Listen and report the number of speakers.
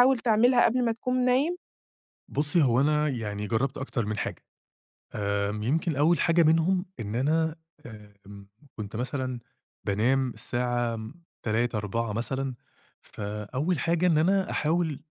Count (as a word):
two